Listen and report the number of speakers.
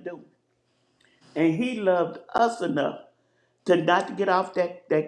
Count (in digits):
1